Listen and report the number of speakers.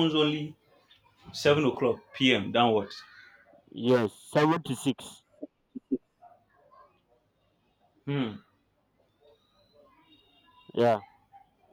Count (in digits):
2